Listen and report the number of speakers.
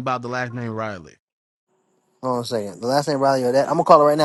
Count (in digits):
2